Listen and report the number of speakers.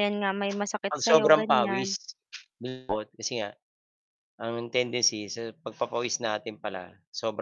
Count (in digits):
2